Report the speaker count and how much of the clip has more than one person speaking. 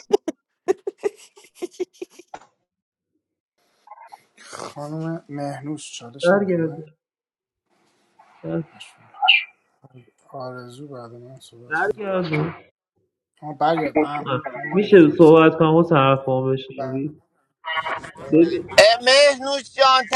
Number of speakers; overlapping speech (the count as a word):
three, about 9%